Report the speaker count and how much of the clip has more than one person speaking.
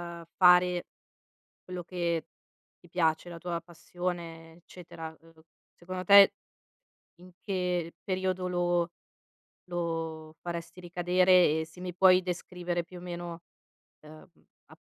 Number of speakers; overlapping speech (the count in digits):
1, no overlap